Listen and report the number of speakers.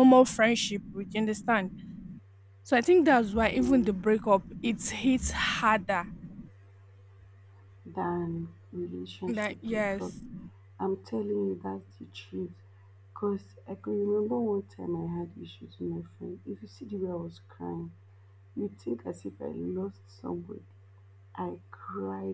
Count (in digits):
2